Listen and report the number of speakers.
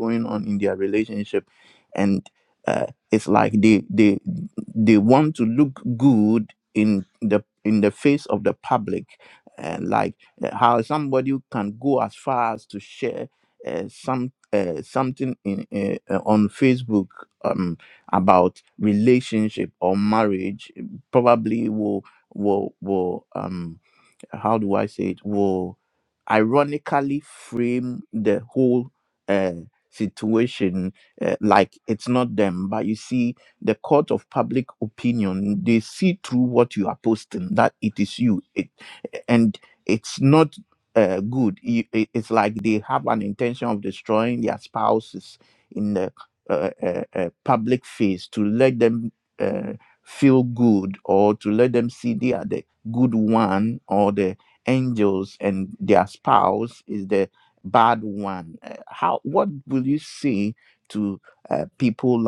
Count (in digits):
1